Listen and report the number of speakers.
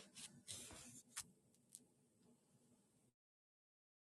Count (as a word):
zero